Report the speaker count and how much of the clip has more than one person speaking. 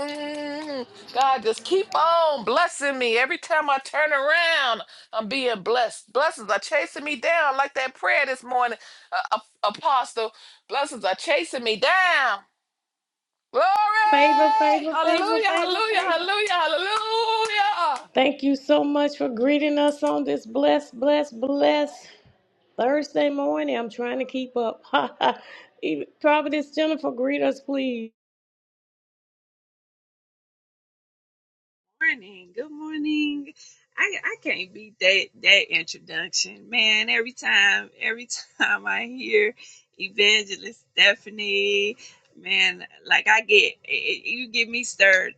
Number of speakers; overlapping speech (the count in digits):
3, about 3%